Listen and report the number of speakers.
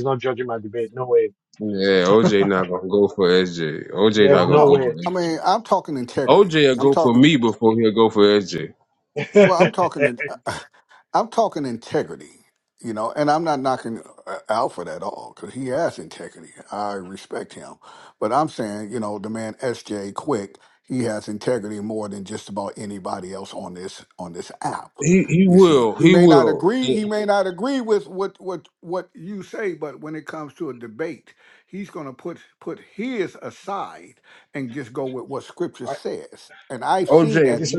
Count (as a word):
three